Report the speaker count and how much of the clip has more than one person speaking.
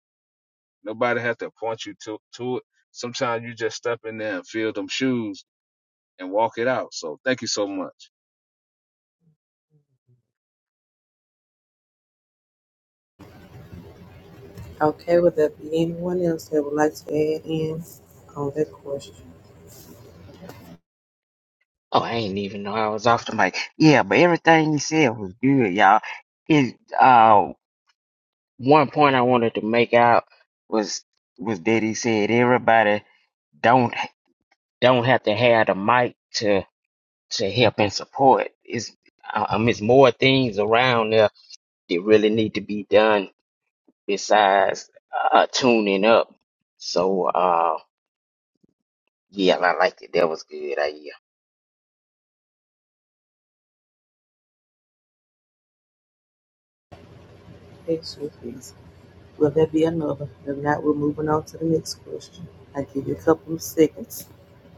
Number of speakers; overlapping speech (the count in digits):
3, no overlap